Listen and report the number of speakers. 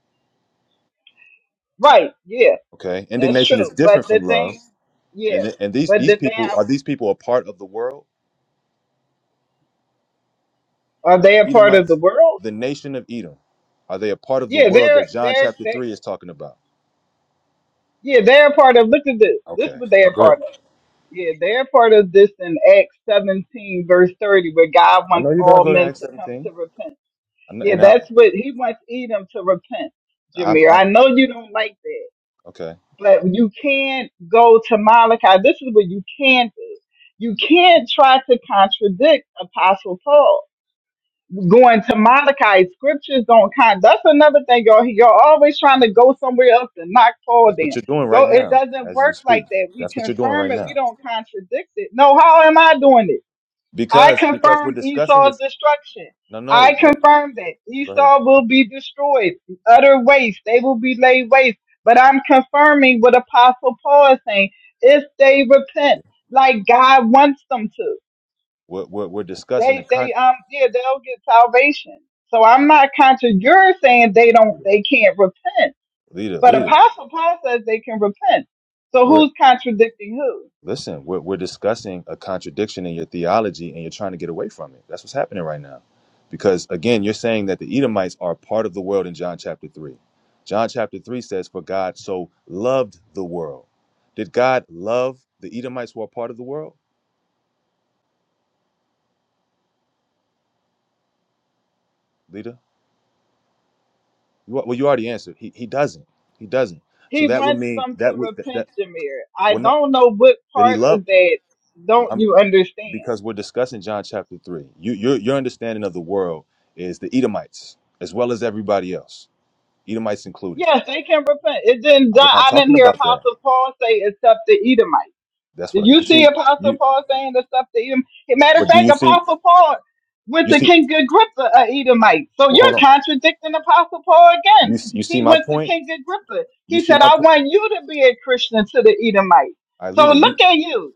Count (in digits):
2